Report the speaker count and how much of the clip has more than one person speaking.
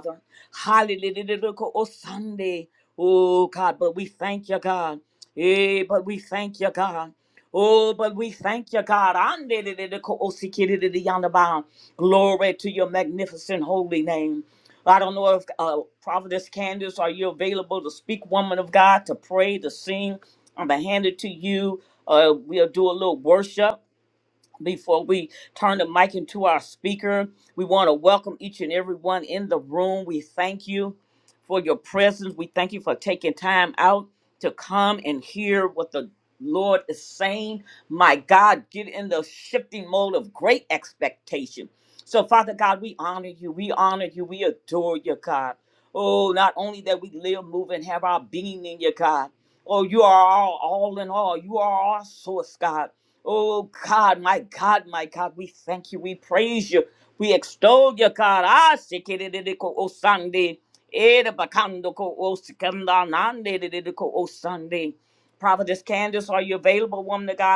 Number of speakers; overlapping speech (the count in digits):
1, no overlap